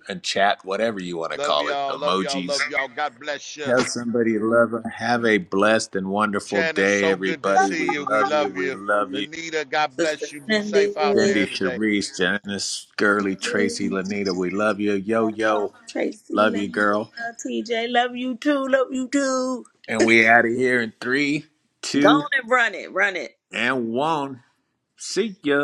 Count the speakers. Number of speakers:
three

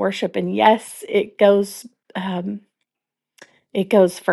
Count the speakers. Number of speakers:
one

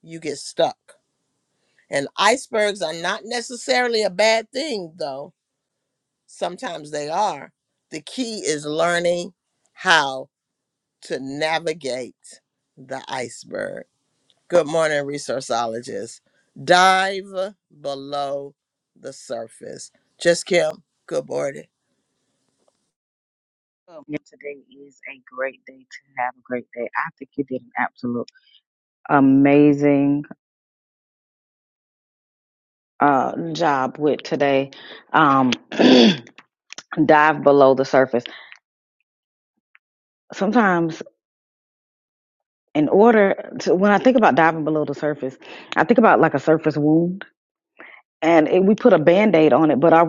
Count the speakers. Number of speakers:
two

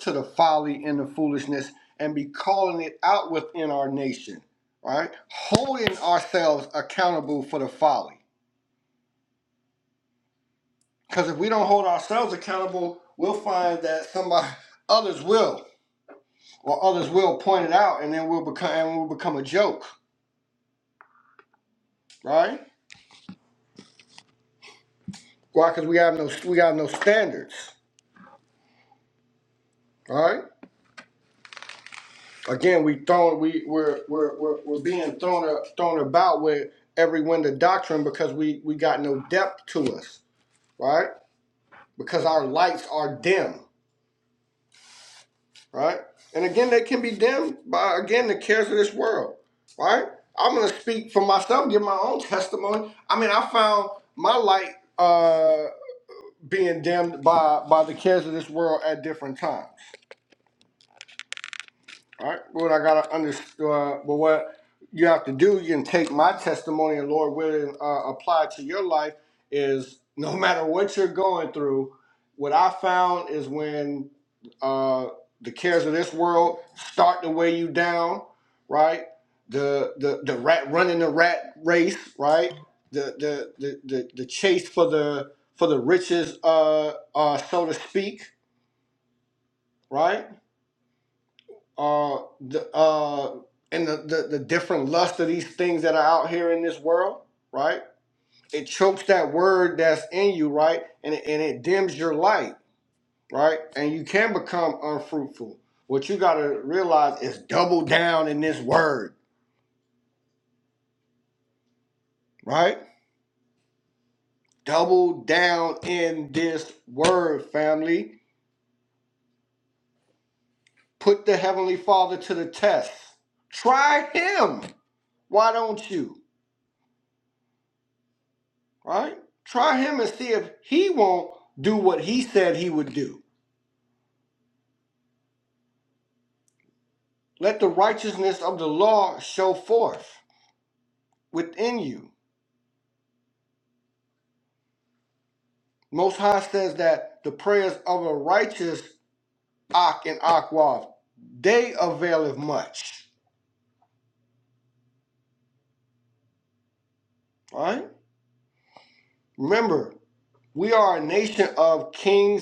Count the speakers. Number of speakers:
one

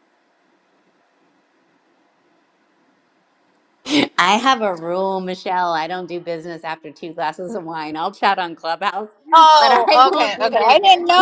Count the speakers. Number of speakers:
two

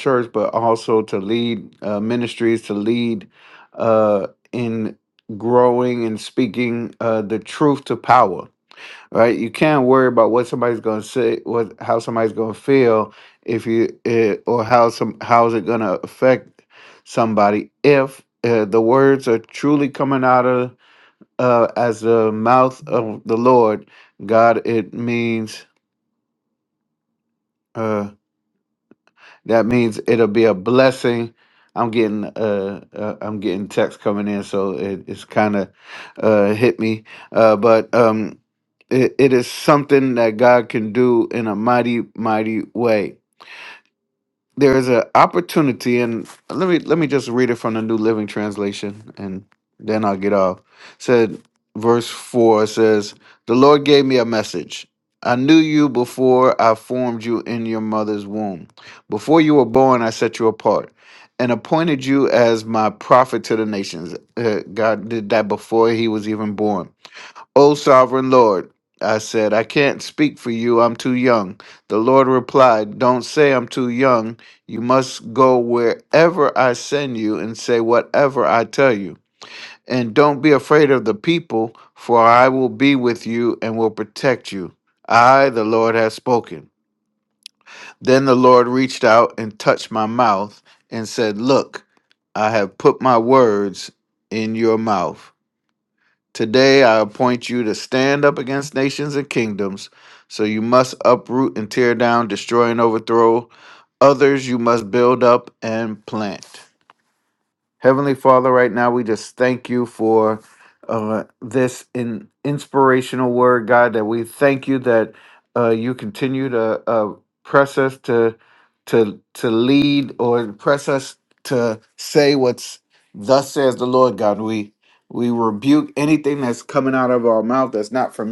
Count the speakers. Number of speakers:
one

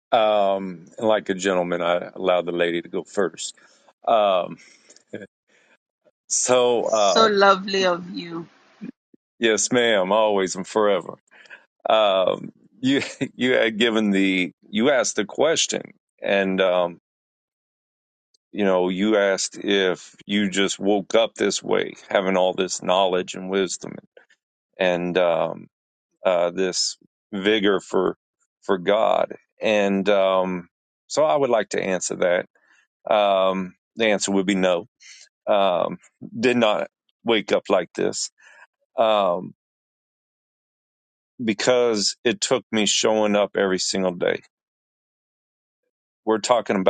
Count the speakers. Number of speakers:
two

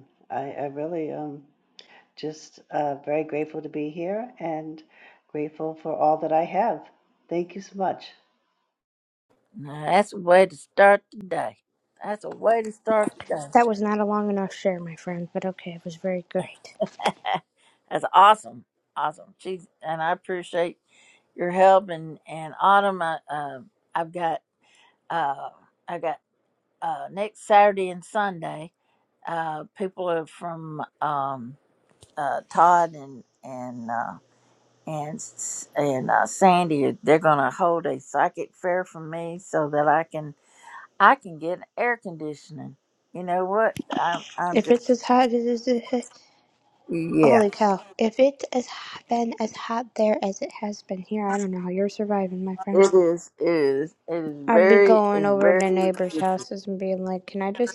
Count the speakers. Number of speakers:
three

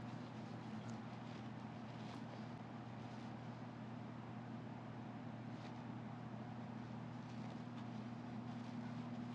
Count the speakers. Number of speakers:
zero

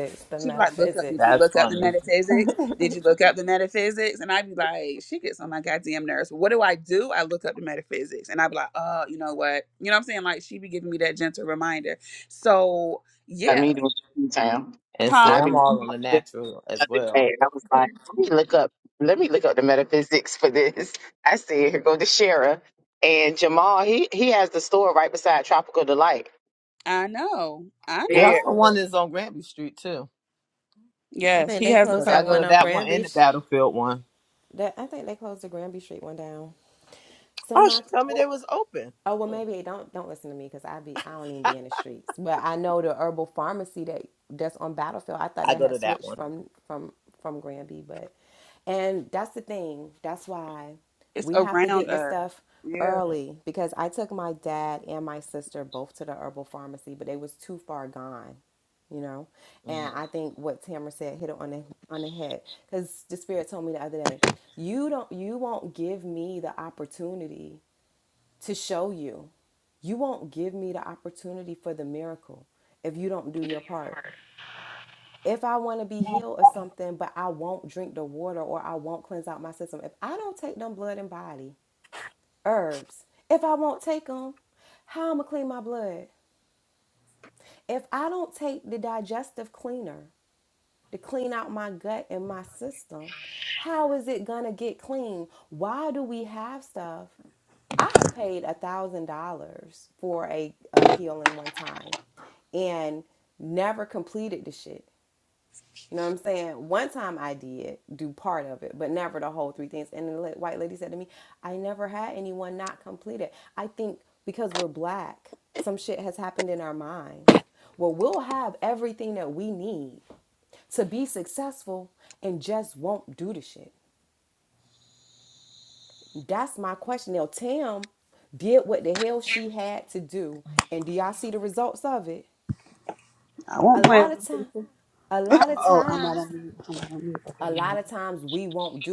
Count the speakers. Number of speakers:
four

